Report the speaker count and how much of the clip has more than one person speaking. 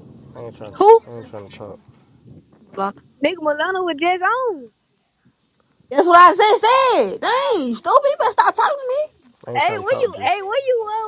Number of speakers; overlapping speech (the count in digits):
3, about 7%